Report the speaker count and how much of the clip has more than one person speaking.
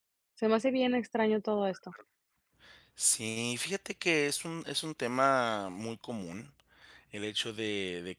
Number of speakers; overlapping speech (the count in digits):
2, no overlap